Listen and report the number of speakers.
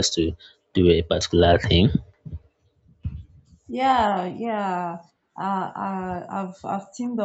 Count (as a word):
two